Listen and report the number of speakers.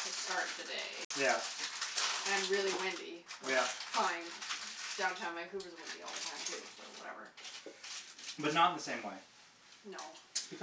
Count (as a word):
two